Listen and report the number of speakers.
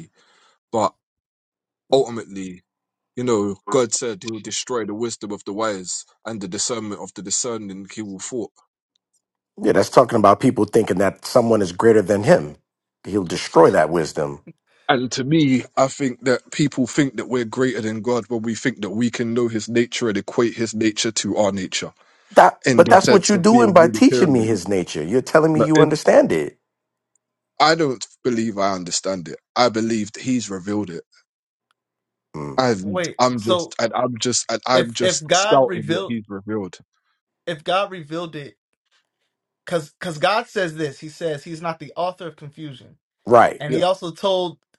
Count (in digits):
3